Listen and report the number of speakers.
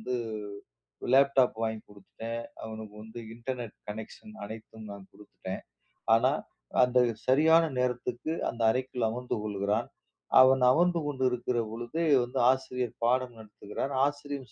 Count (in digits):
1